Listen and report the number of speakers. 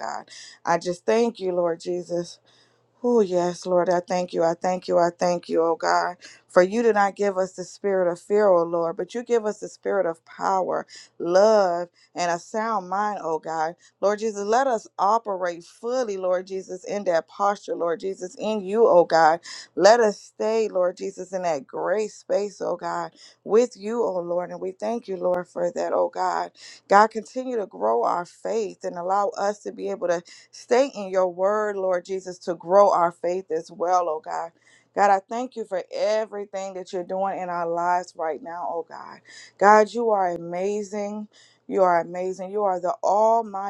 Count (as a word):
one